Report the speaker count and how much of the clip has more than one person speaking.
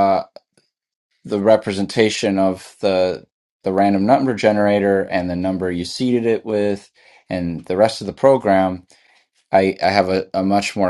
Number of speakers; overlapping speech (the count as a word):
one, no overlap